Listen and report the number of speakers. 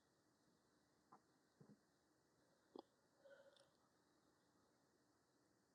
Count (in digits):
0